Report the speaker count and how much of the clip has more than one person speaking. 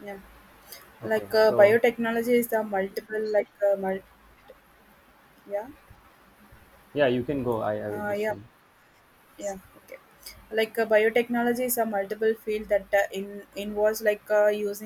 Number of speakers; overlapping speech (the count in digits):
2, about 8%